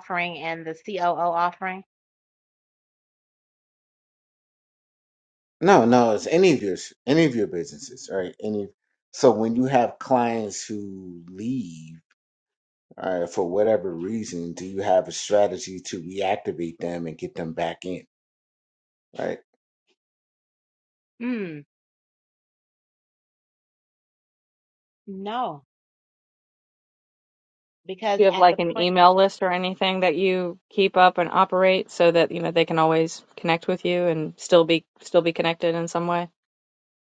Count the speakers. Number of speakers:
3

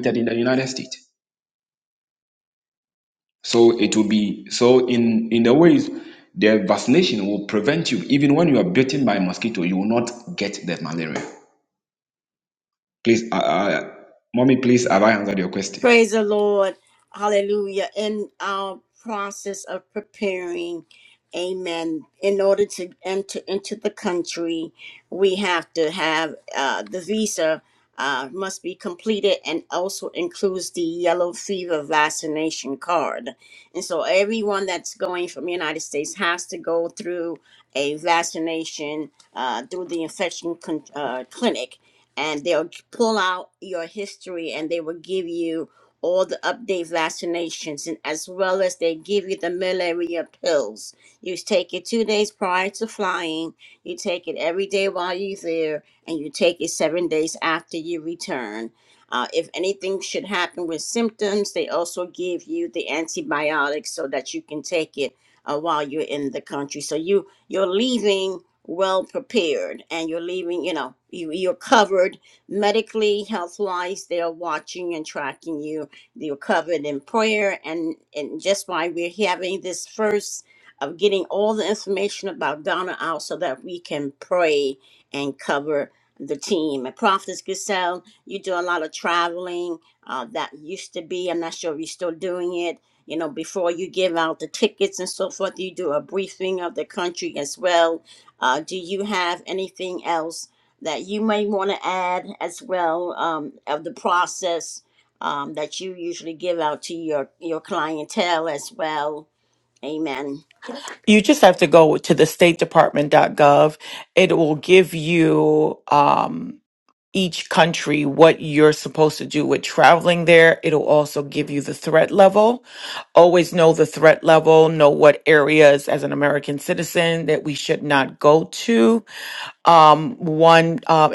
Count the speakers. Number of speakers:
3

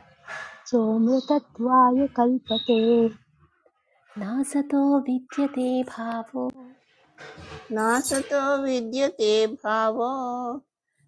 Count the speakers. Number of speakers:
3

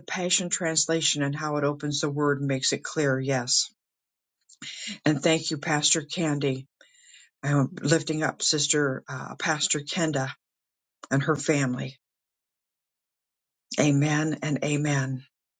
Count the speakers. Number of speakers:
1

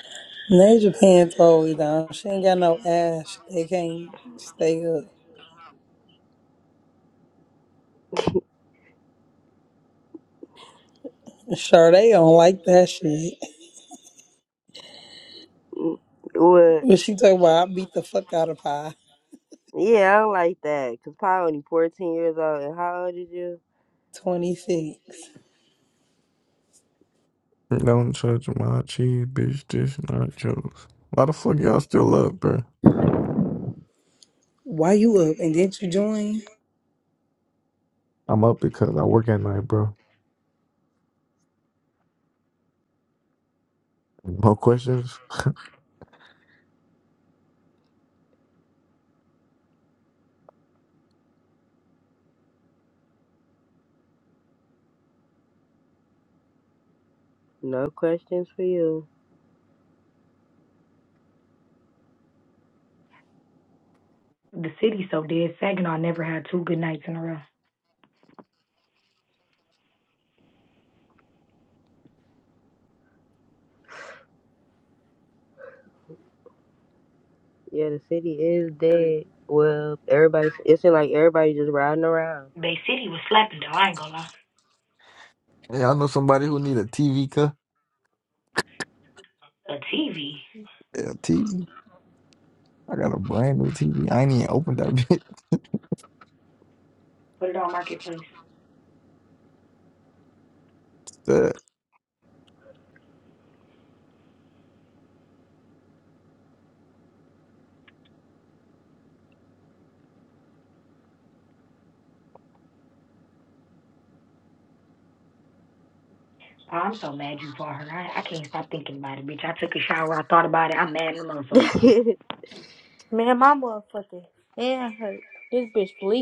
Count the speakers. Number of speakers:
5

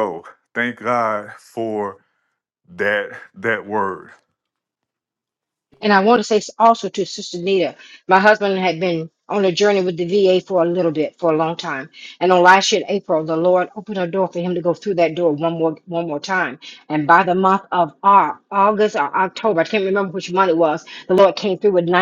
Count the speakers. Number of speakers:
2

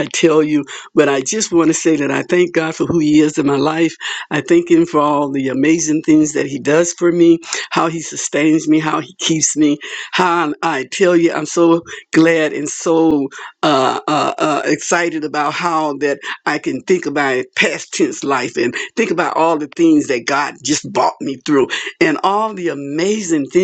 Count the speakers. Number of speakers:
1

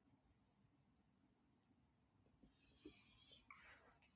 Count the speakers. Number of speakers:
0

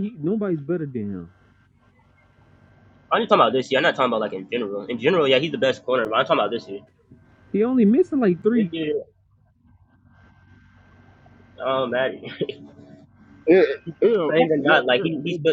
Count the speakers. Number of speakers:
3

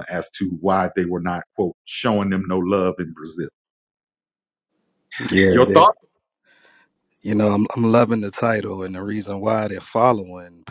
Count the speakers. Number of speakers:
2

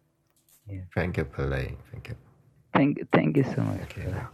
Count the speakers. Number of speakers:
2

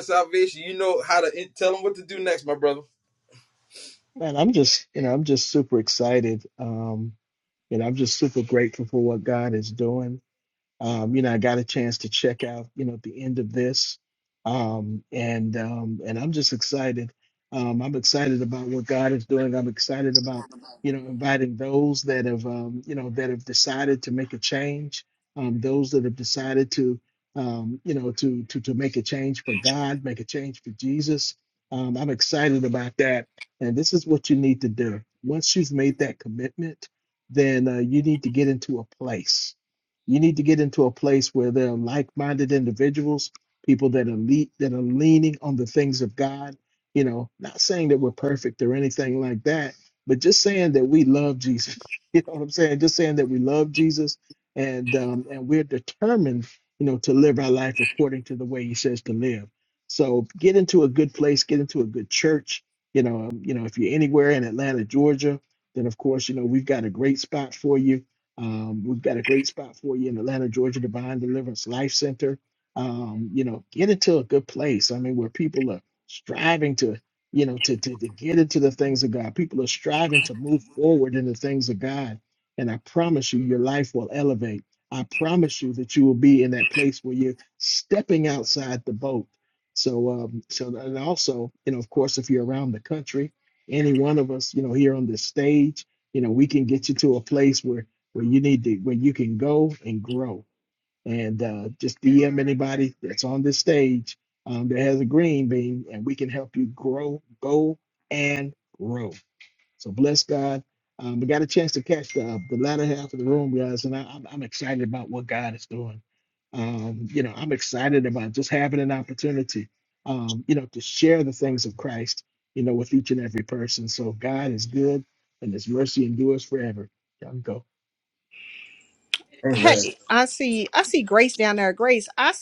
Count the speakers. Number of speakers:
3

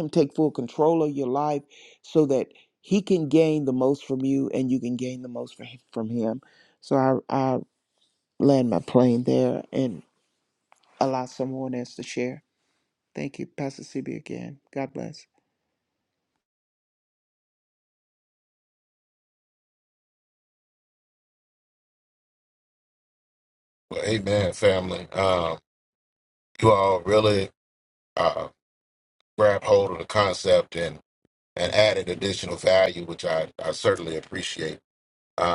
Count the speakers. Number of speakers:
2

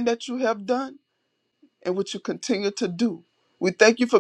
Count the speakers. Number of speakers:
1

